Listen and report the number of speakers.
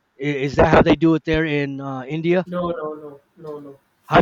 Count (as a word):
two